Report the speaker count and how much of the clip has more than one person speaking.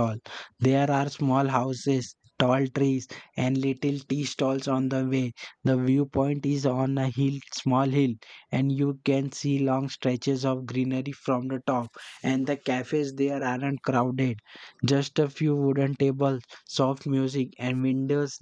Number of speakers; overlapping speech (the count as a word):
one, no overlap